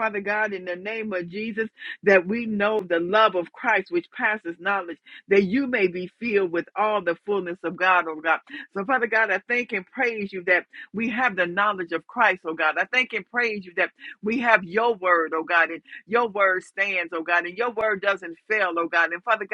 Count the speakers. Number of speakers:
1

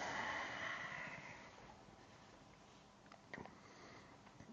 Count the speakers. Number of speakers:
0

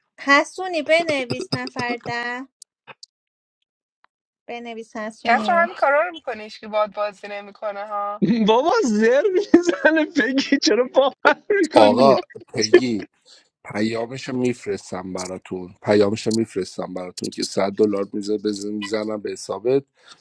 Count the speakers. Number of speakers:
4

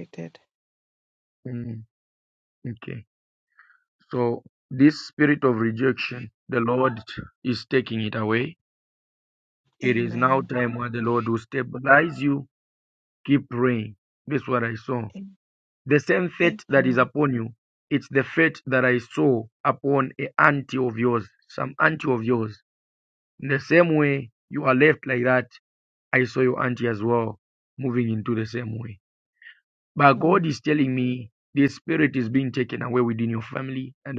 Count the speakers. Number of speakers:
2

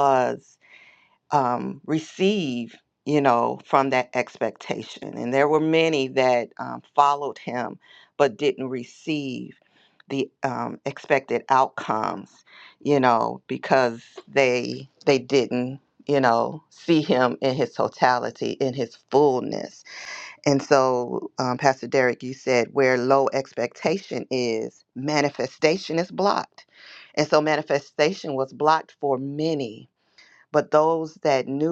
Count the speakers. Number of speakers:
1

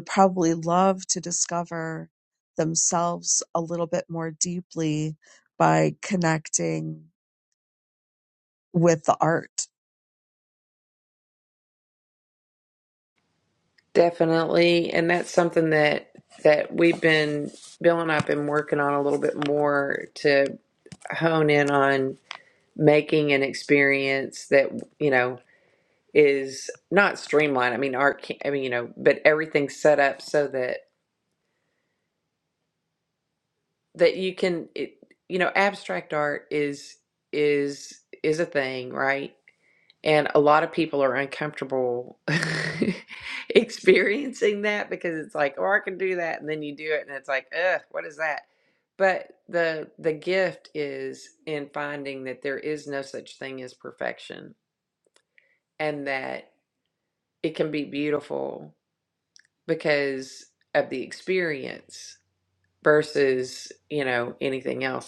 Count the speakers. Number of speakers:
2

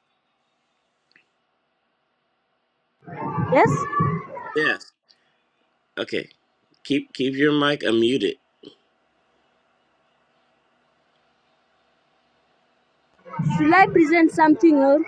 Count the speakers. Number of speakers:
2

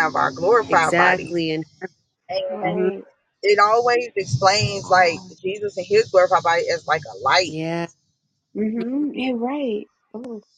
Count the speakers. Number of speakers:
3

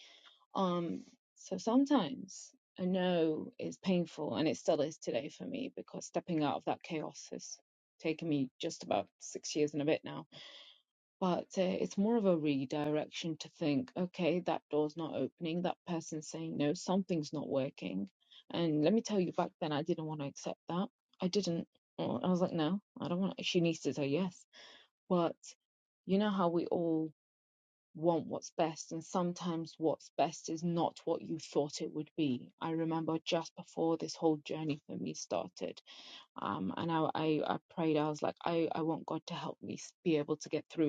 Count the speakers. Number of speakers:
1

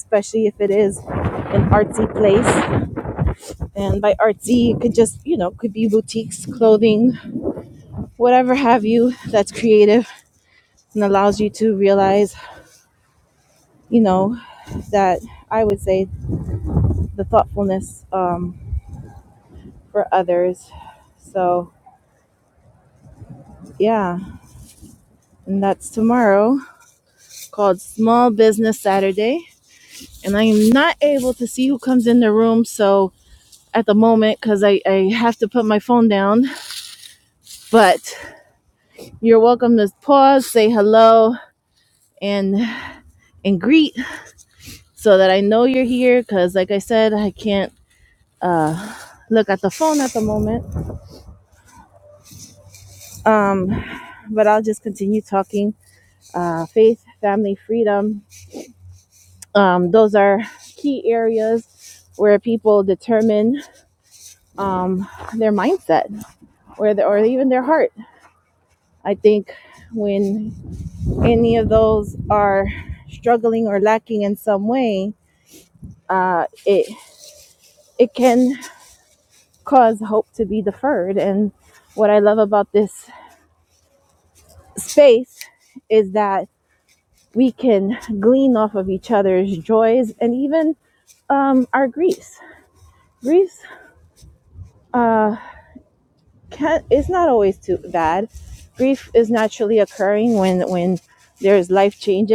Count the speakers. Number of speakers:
1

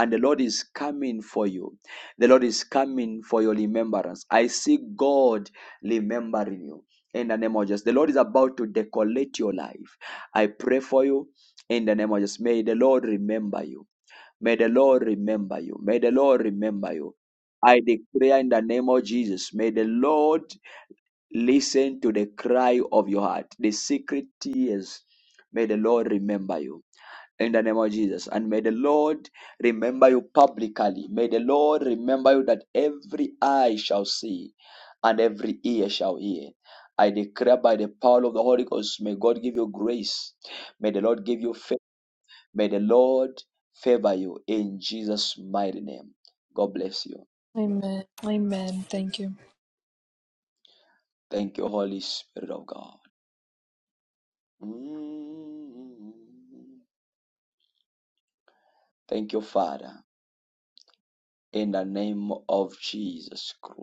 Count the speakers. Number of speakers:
2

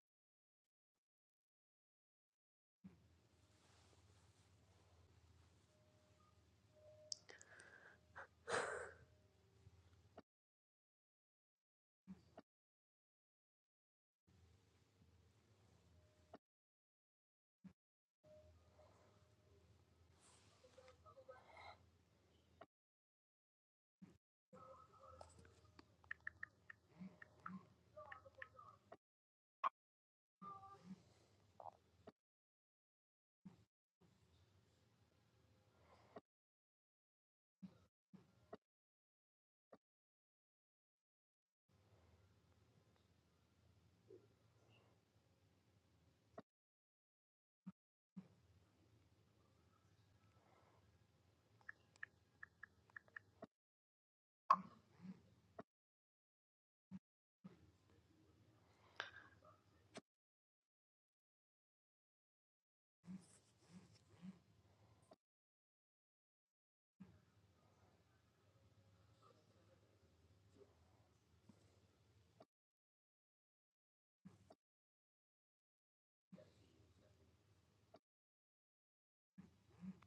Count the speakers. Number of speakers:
0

